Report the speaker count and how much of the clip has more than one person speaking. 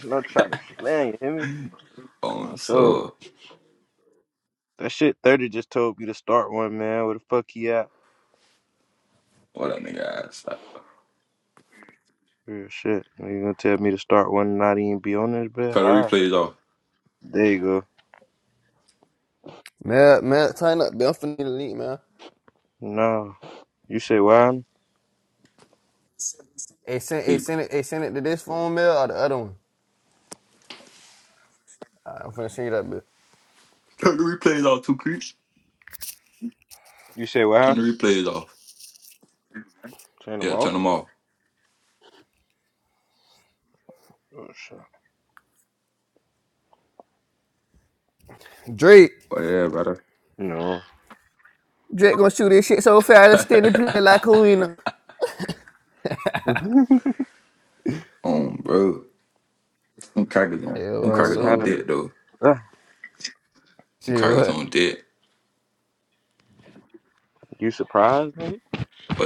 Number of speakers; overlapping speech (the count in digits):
3, about 4%